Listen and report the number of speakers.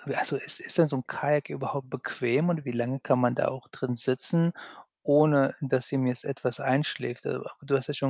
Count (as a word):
one